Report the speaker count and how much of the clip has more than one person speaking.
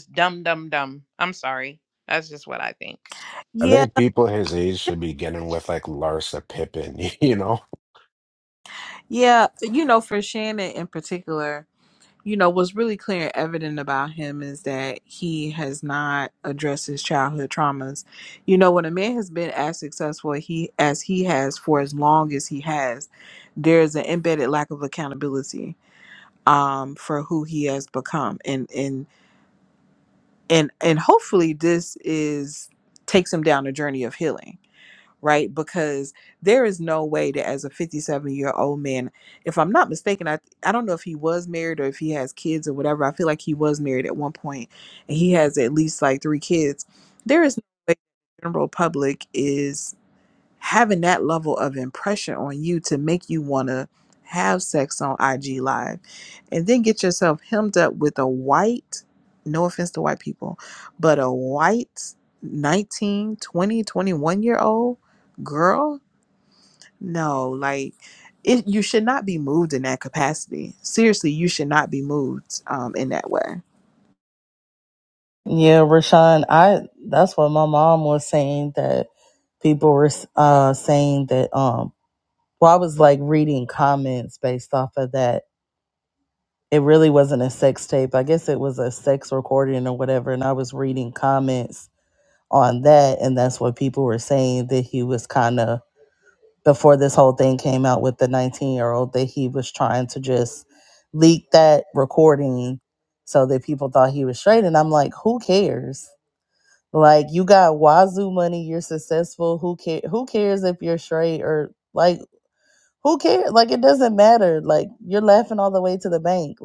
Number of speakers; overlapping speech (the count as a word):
four, under 1%